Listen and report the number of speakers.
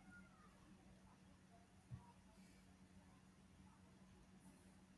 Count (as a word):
zero